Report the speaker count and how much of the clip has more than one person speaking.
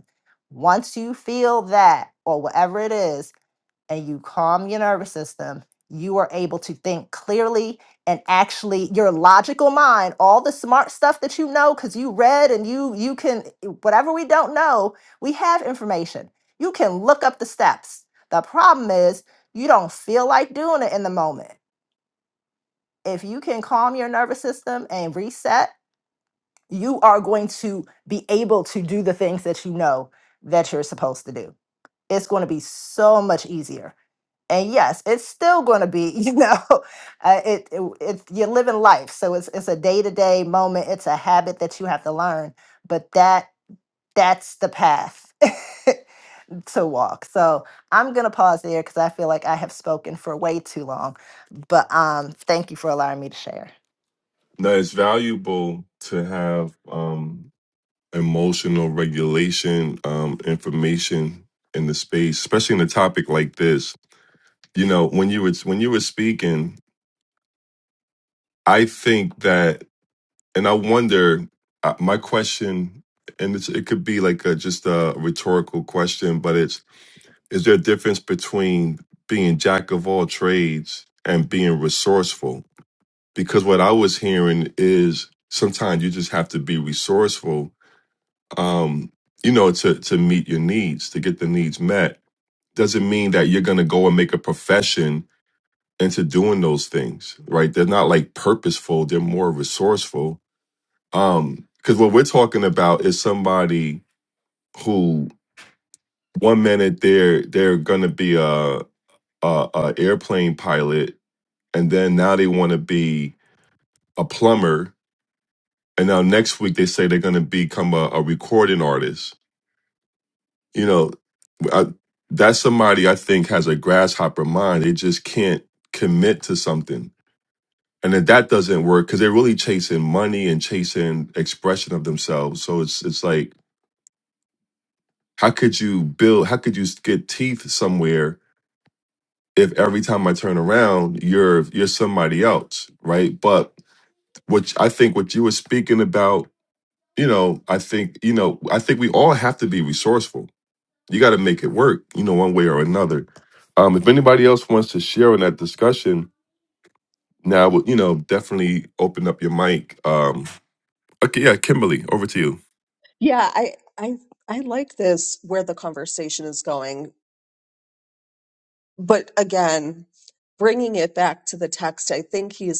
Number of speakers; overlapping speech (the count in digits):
3, no overlap